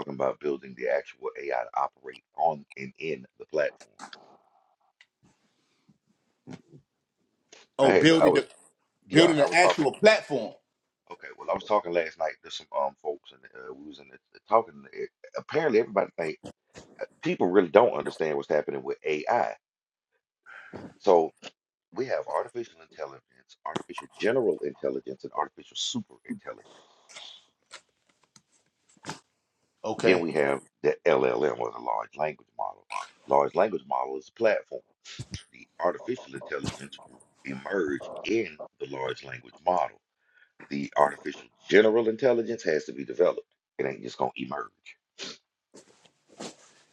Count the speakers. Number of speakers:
2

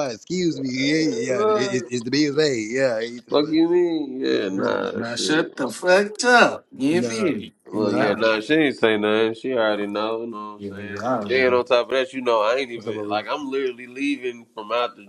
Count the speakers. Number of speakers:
3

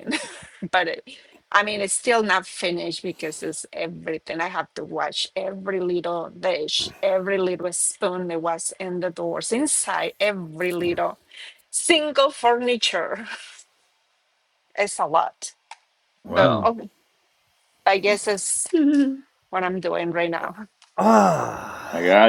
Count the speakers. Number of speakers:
3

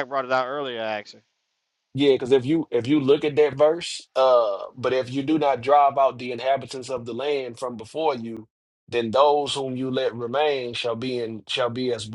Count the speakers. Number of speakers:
2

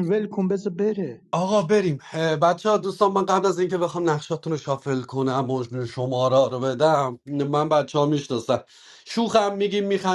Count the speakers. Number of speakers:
2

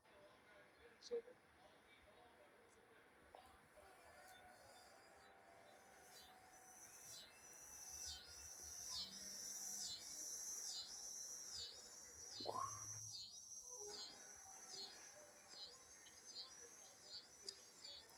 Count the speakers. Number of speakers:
0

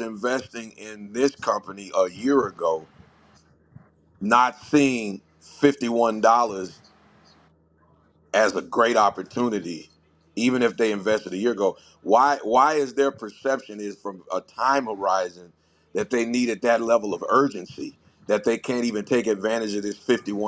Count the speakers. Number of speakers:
1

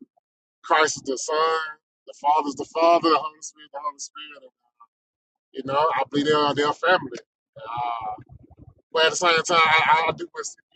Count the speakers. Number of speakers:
1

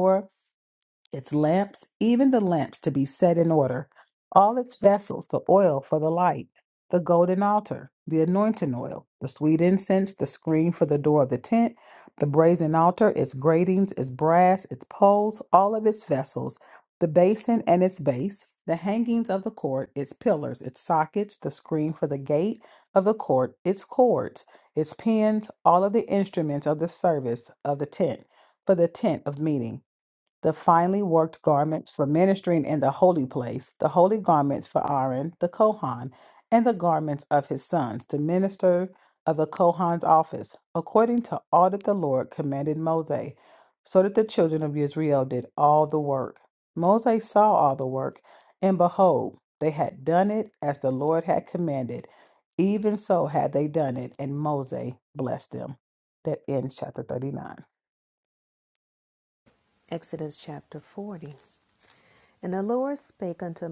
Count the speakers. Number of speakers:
2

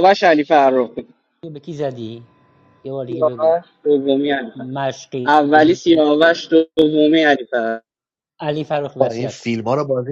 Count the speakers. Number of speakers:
3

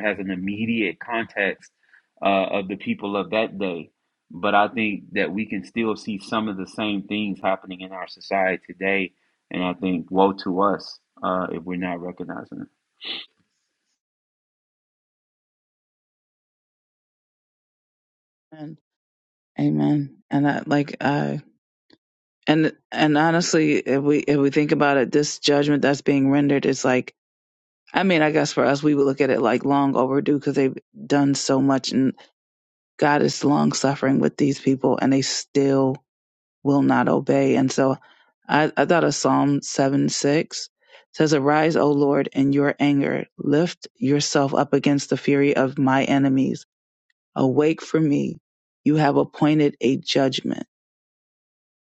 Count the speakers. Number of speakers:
2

